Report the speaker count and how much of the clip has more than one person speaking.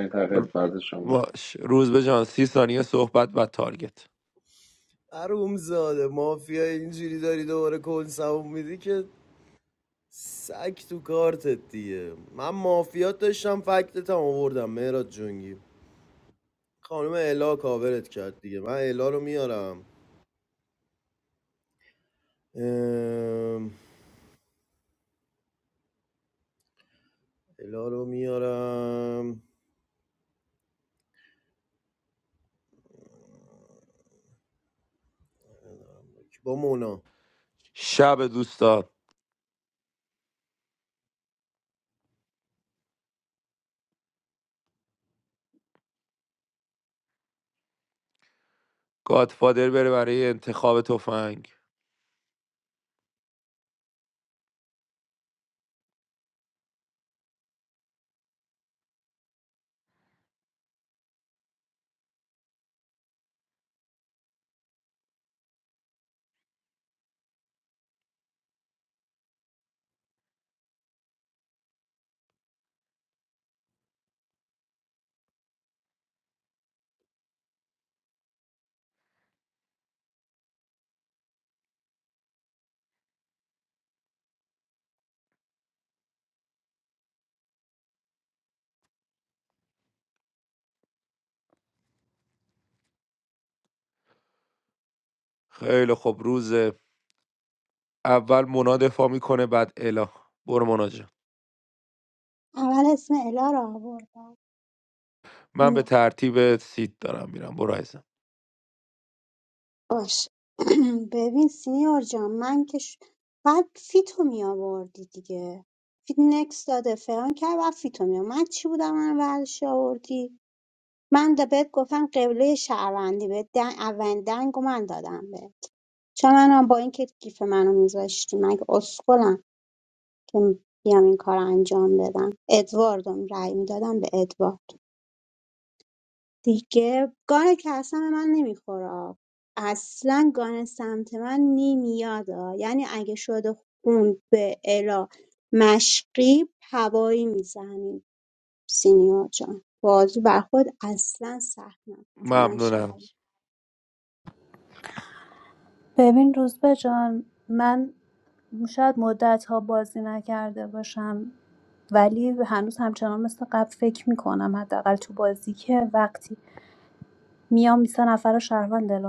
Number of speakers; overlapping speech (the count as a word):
five, about 1%